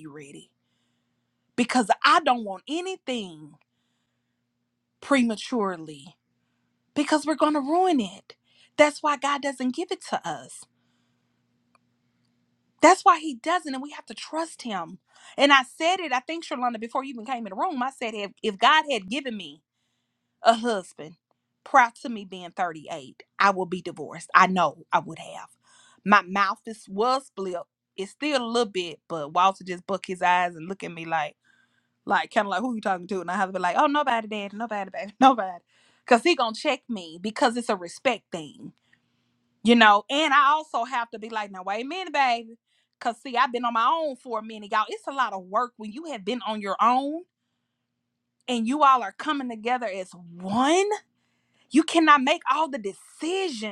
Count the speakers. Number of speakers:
1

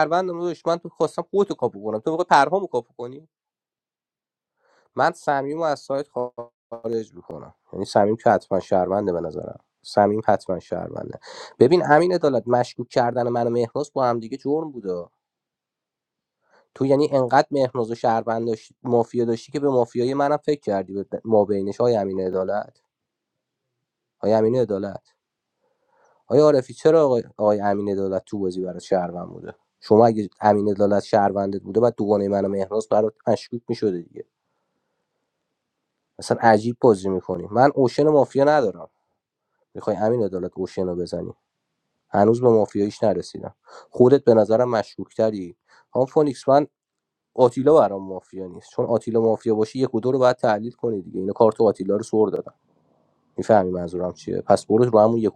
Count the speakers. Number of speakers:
1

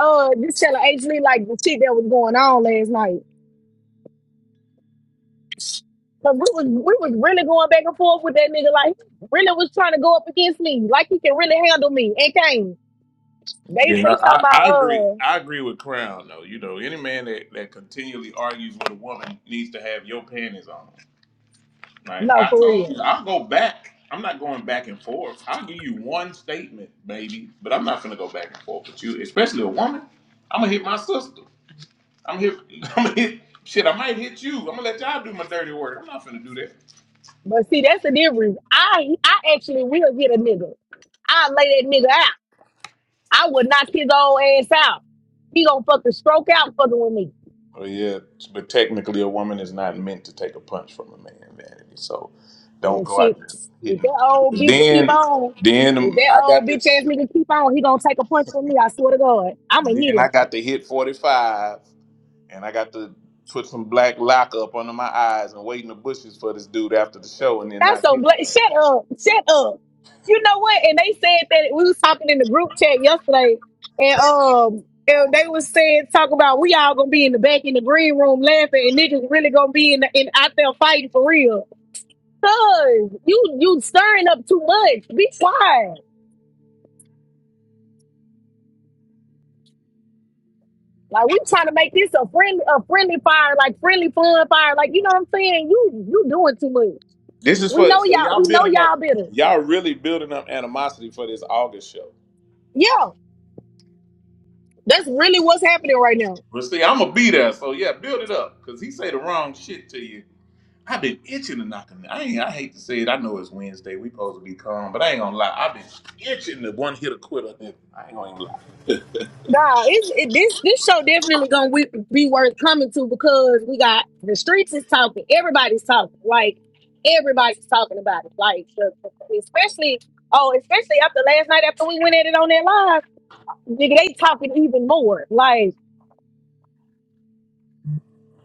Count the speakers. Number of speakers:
2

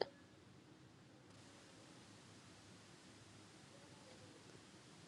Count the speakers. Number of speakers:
0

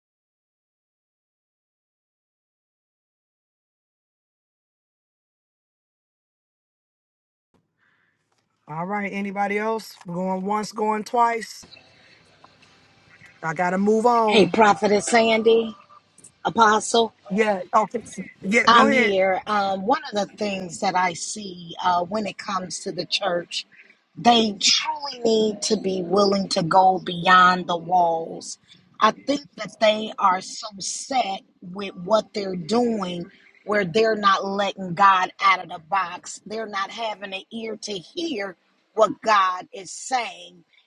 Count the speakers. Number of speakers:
2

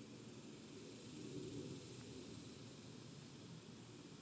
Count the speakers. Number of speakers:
0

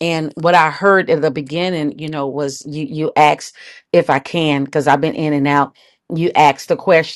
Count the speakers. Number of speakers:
1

